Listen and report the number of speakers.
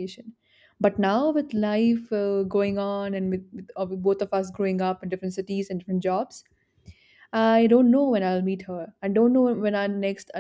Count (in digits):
1